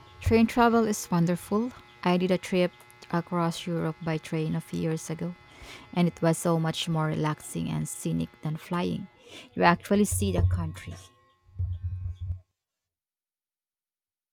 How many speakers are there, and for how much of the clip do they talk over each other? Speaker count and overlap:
1, no overlap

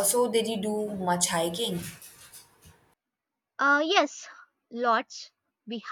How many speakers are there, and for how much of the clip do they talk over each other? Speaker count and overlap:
2, no overlap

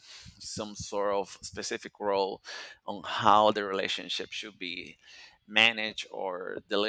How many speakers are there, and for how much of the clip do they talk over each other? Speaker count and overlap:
1, no overlap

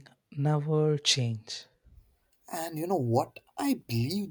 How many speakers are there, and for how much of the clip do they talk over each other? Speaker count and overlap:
2, no overlap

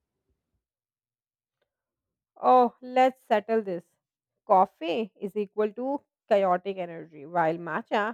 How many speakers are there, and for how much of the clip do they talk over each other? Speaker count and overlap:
1, no overlap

